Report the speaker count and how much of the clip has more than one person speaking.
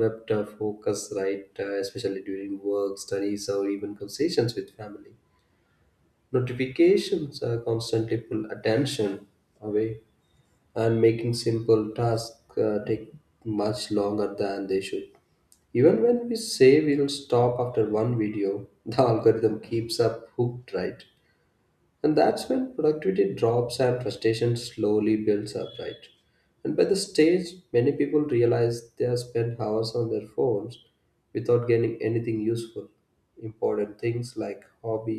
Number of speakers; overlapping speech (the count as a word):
one, no overlap